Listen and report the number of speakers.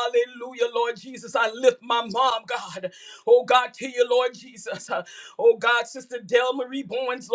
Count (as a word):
one